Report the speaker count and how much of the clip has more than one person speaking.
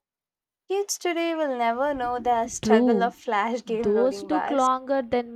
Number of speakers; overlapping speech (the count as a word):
two, about 23%